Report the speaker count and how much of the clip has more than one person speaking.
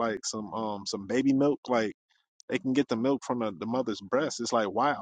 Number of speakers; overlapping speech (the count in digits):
1, no overlap